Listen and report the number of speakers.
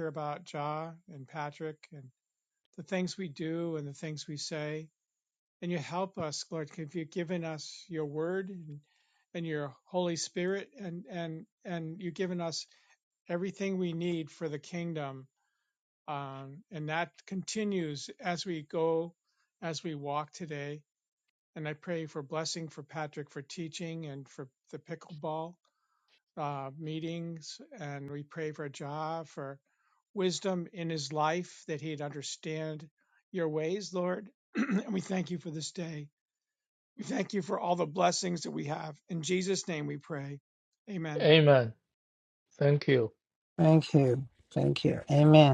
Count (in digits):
3